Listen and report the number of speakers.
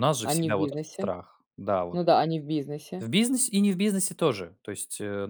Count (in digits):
2